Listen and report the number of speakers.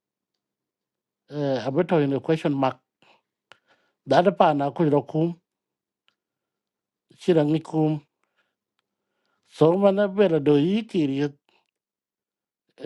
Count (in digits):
1